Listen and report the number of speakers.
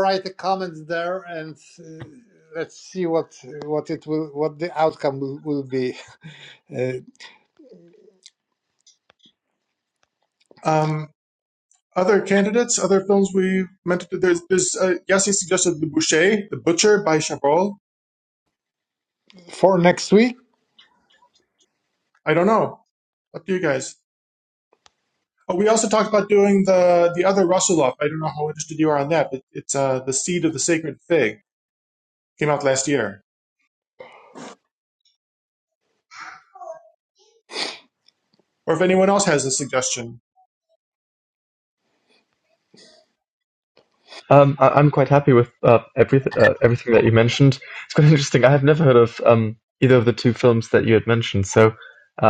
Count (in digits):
3